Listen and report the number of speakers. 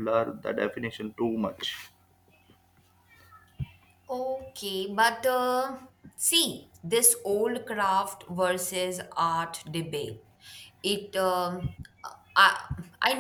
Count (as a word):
two